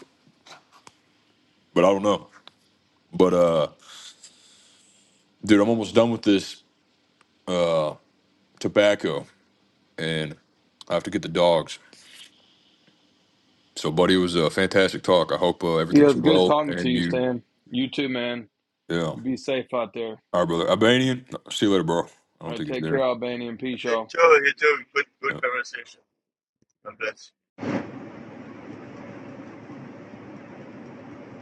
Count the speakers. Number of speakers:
three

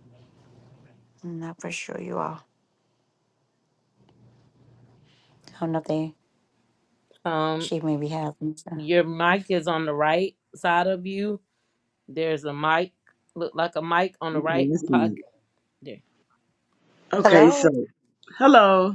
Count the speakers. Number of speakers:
three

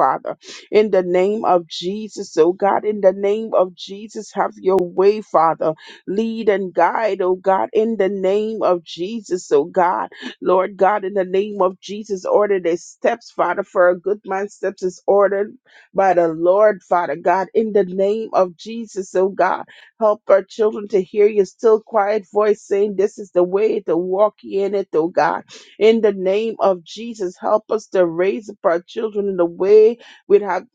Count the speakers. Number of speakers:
one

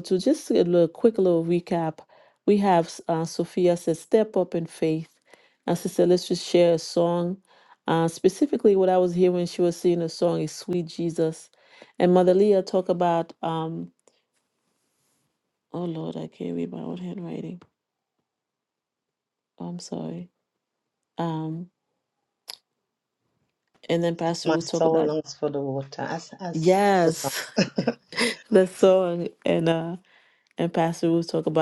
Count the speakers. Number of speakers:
two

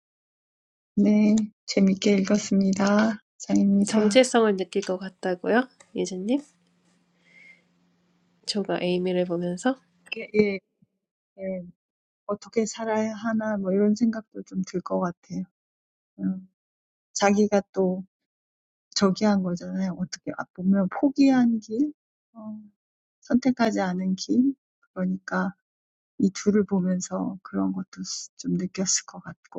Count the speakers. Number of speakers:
two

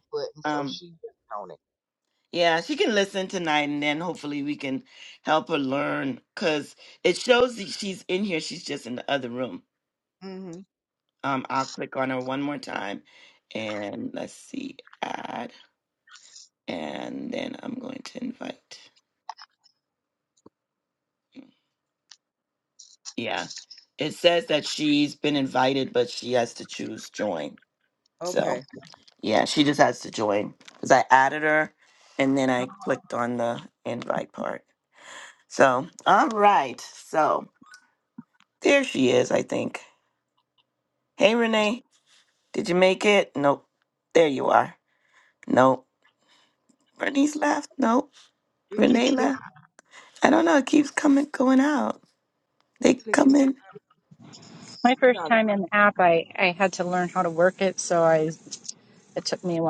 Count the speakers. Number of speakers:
three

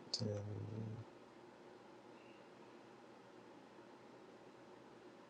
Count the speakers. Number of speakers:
zero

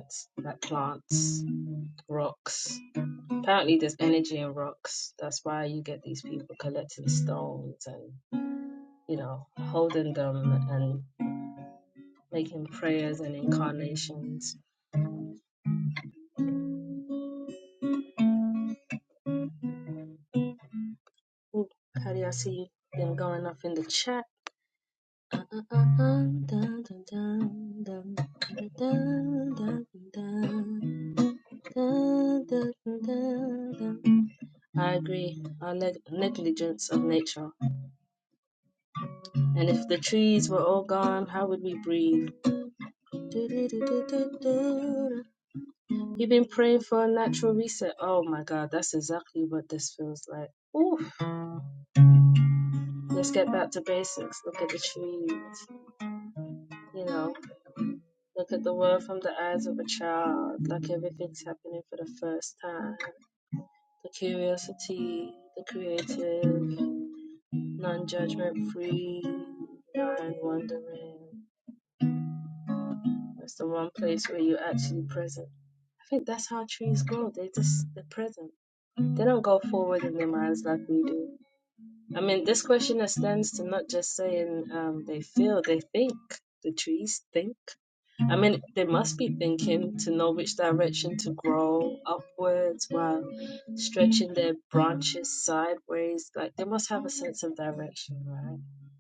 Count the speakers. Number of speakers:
one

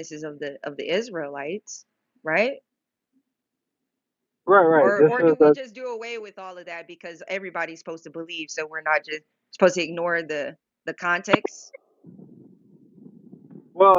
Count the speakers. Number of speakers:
two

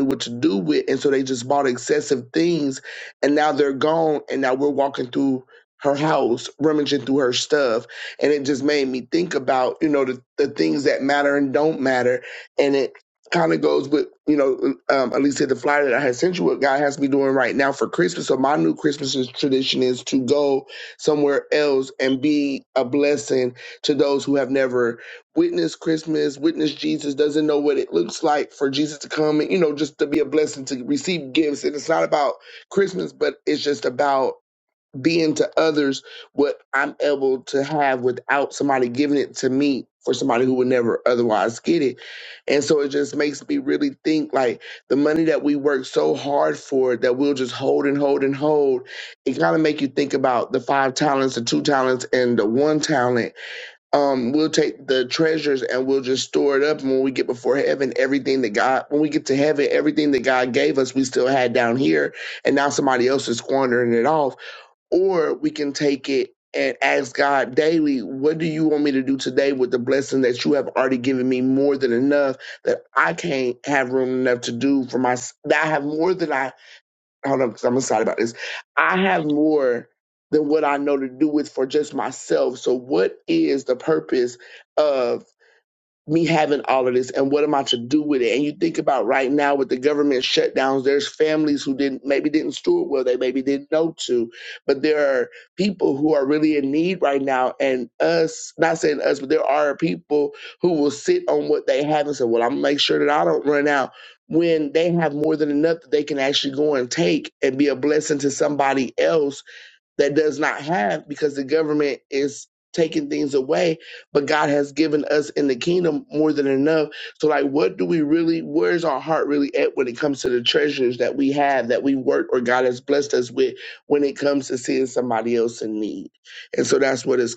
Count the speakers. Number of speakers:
one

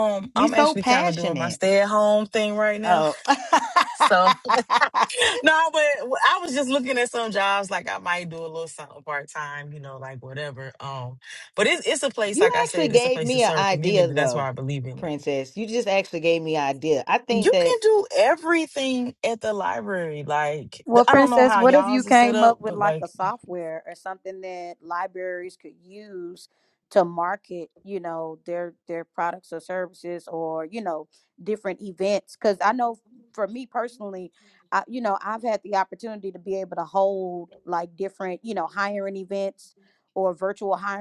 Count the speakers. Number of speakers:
three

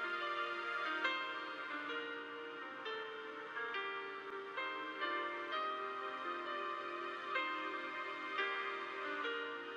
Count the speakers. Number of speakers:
zero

